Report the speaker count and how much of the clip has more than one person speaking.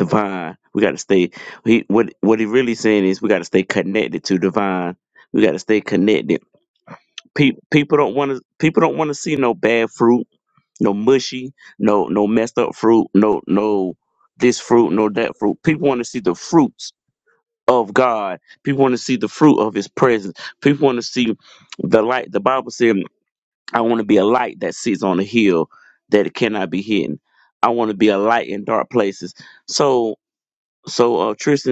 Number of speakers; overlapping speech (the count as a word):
one, no overlap